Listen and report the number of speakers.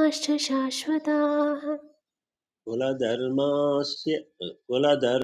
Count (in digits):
2